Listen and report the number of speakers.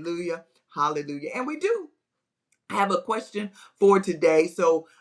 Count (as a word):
one